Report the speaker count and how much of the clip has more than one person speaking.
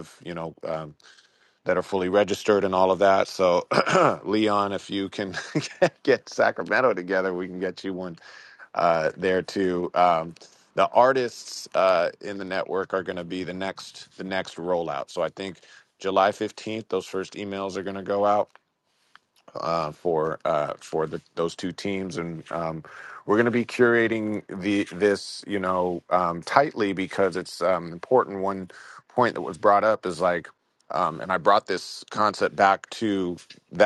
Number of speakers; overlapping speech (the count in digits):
1, no overlap